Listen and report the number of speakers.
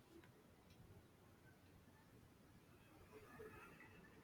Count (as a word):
zero